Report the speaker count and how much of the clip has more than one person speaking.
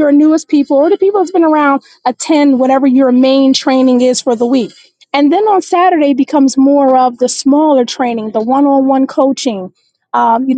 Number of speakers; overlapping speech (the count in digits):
1, no overlap